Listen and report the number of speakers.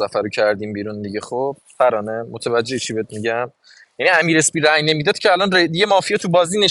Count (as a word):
one